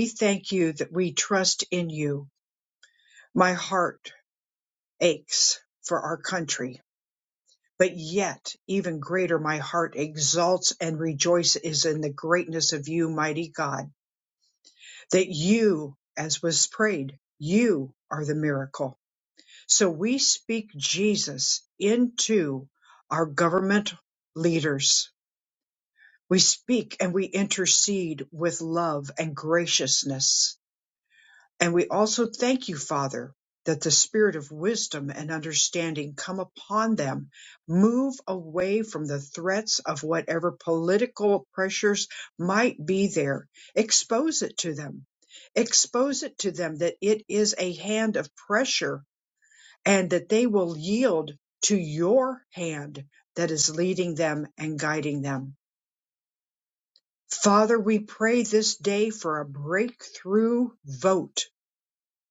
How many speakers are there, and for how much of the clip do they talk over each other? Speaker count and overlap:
1, no overlap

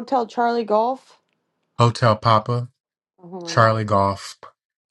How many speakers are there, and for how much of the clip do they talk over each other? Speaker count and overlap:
2, about 3%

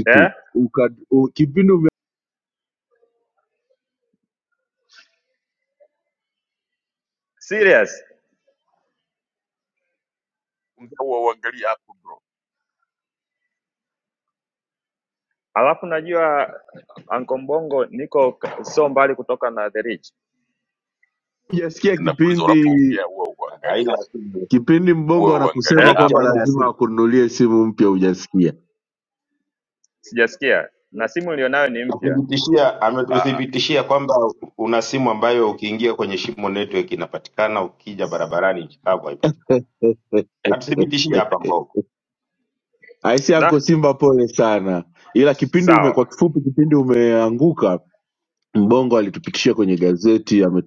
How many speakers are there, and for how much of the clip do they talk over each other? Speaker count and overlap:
4, about 9%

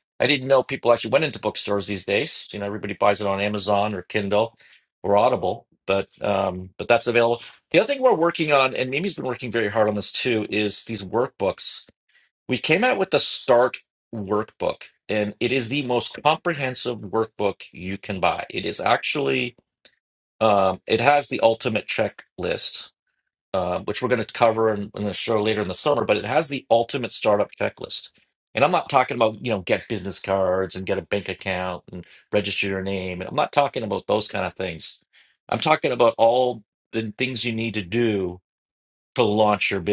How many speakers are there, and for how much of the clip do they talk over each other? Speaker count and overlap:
1, no overlap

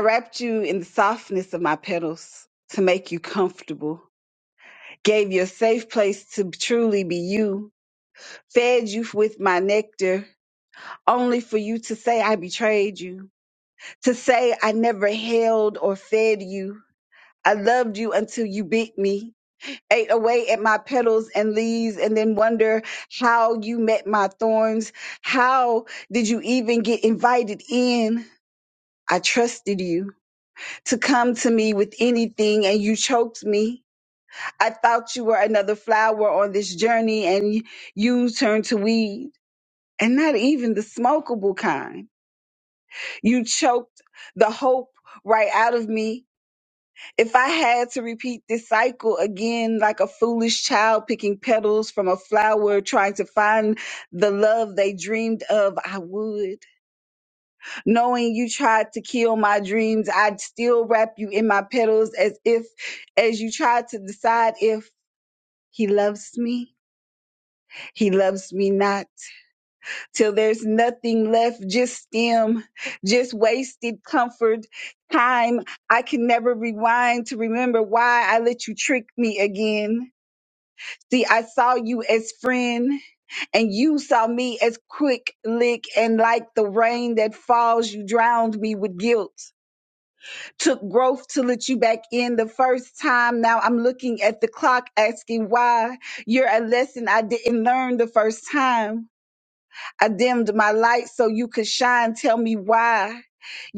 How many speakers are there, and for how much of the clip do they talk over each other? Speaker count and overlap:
1, no overlap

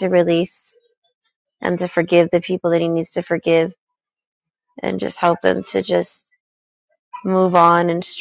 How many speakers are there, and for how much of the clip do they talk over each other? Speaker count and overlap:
1, no overlap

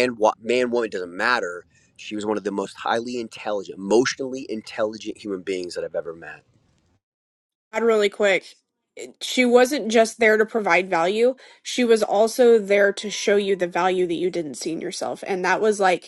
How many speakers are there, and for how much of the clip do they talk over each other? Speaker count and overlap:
2, no overlap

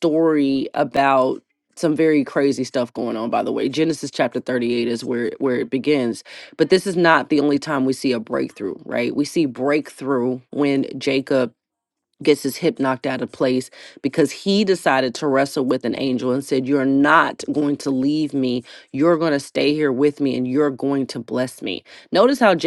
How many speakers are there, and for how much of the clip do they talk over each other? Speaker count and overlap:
1, no overlap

